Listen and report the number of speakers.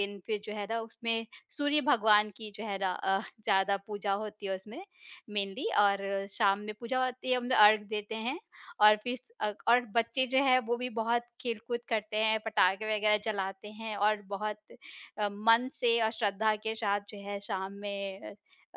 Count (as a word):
one